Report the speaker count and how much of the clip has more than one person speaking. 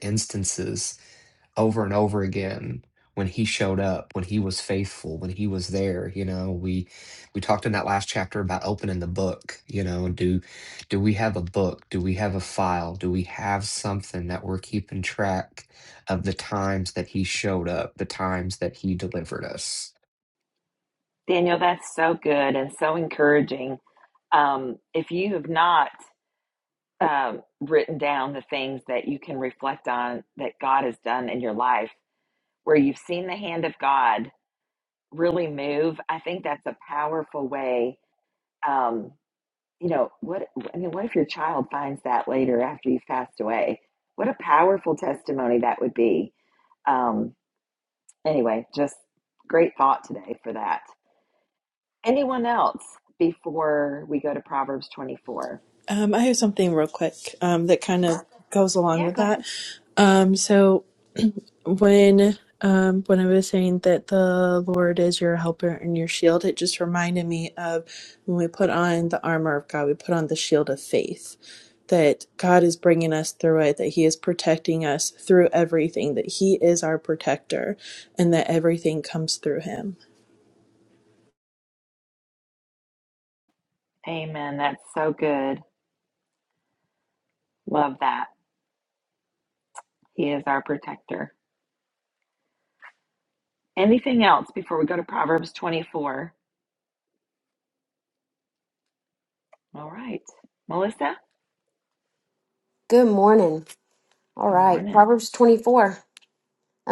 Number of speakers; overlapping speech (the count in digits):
4, about 1%